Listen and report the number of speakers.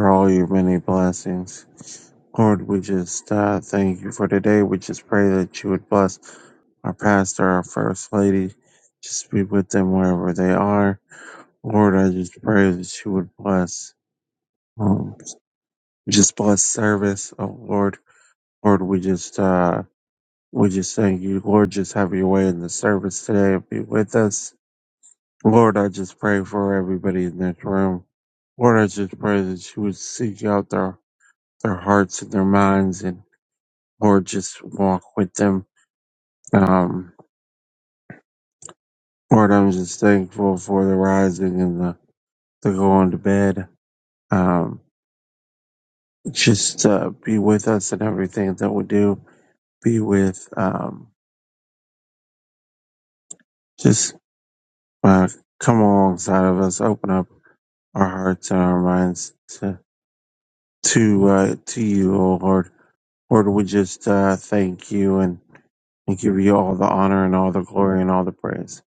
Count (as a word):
one